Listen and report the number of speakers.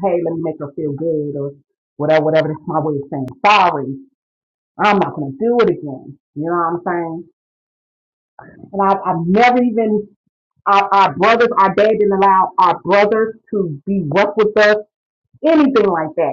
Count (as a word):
one